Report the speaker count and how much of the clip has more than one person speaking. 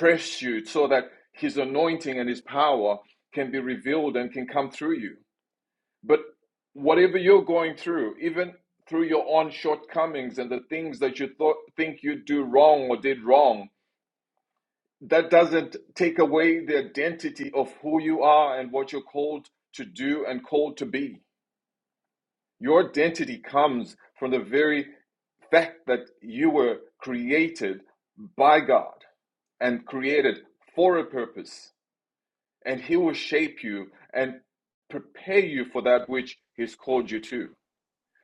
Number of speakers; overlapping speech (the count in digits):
1, no overlap